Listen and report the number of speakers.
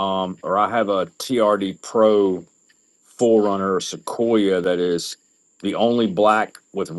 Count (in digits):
1